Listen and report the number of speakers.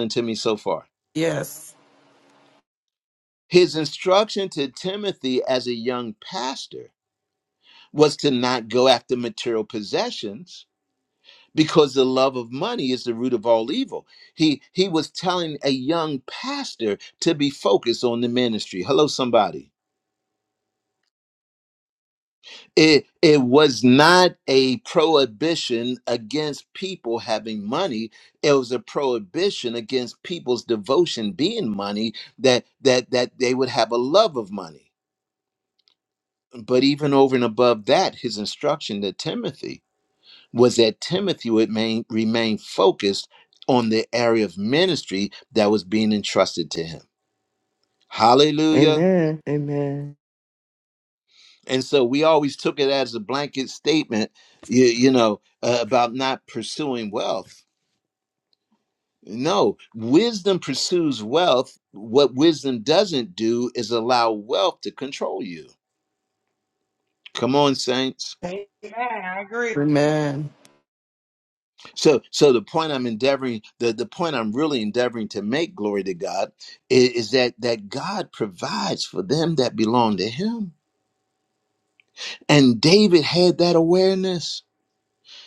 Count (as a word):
four